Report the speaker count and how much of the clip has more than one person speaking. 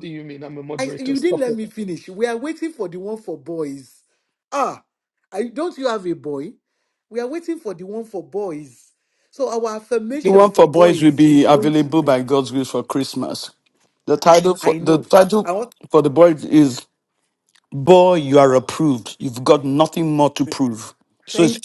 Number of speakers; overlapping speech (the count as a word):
three, about 16%